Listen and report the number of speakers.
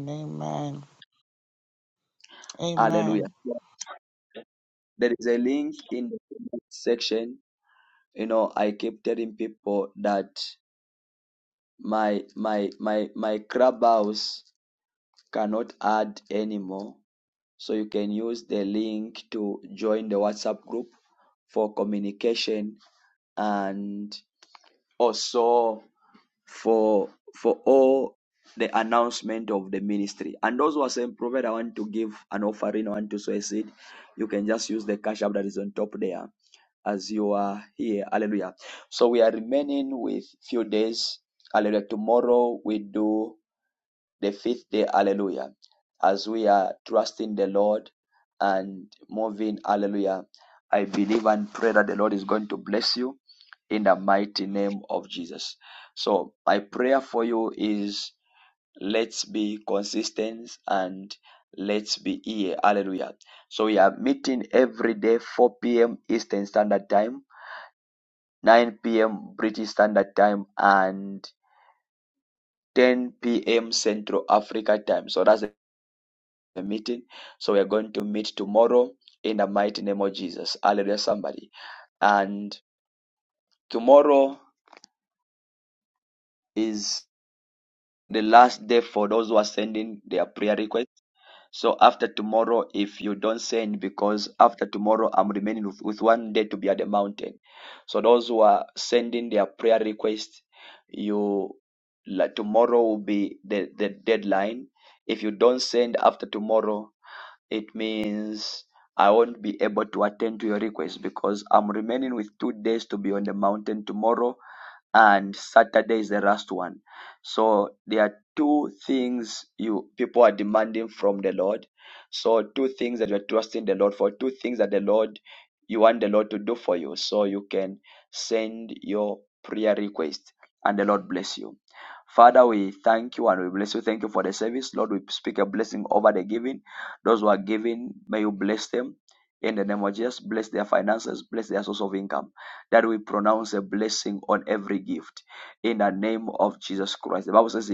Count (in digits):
2